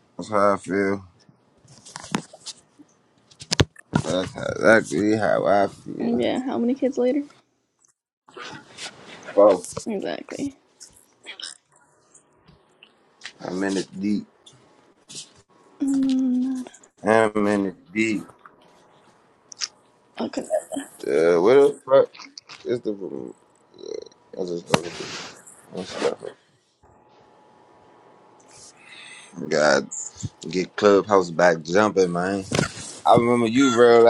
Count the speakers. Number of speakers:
2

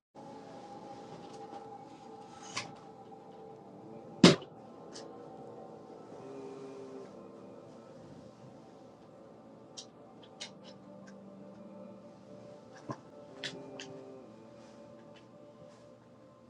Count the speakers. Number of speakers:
0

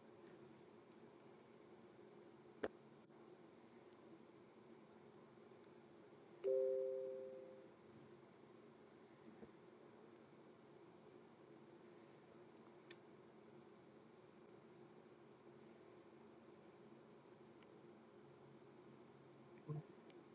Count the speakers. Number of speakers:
0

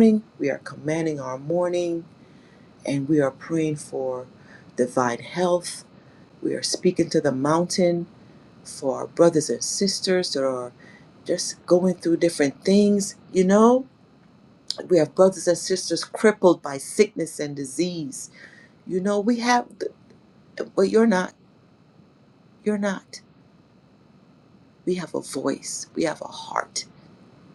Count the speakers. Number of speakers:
1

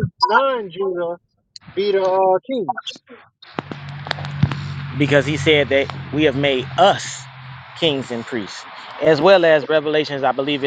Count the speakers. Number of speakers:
2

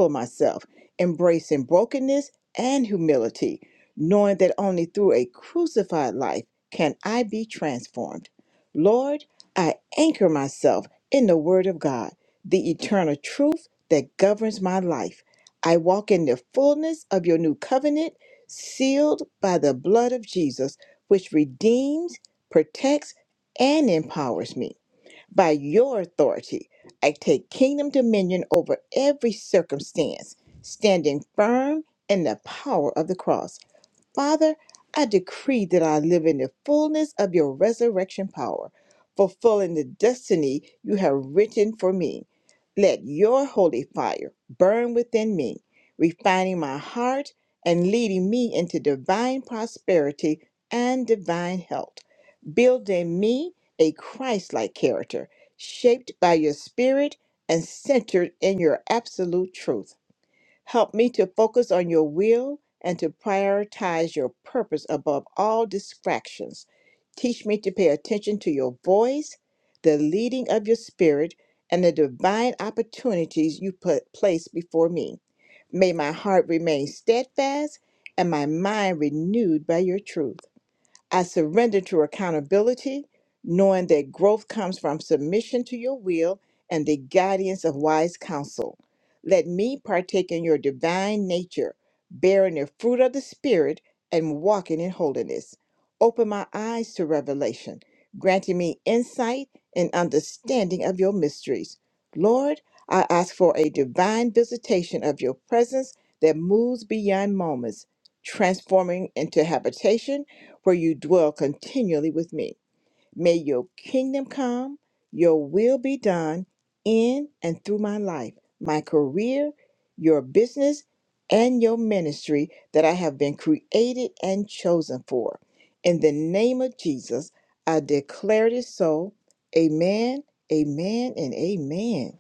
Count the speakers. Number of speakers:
1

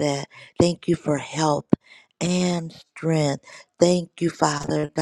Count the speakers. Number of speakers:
1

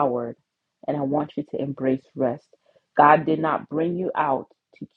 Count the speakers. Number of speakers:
1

